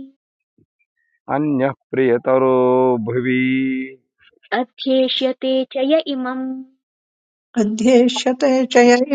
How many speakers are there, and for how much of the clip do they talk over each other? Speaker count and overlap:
3, no overlap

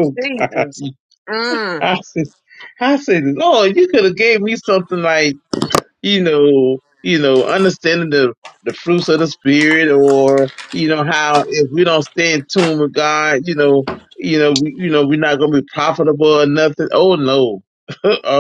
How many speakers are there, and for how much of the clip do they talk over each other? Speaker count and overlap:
2, about 3%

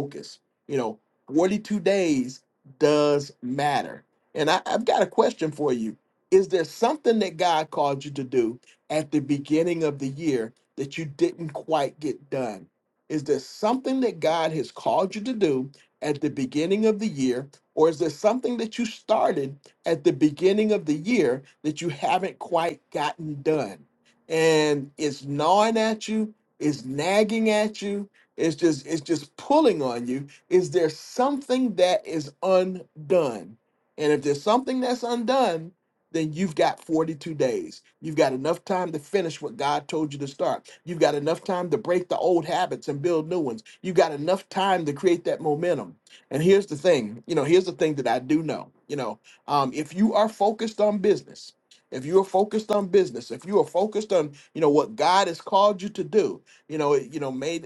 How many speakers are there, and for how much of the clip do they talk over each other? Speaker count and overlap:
1, no overlap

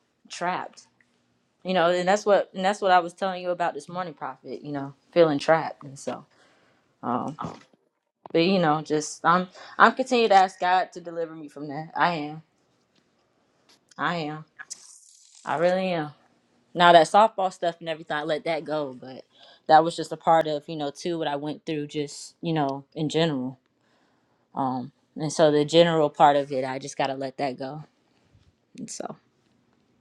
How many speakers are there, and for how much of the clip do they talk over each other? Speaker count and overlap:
1, no overlap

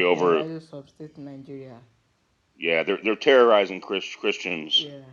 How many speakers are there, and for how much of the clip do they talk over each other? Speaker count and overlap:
2, about 16%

